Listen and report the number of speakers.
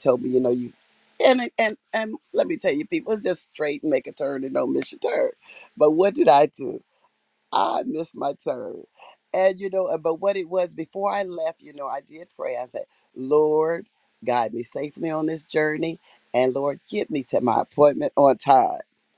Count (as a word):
one